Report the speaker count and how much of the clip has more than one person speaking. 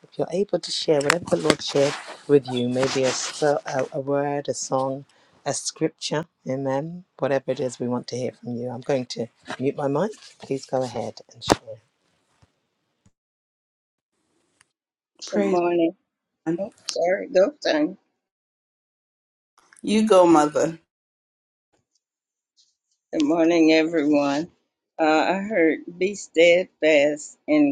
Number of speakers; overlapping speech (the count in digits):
3, about 1%